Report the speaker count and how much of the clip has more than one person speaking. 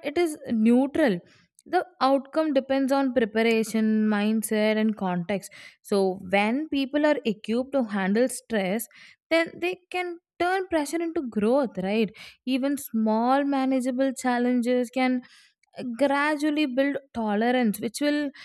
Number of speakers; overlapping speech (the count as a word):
one, no overlap